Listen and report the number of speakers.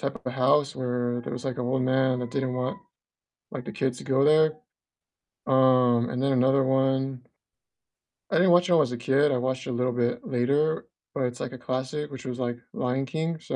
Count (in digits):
1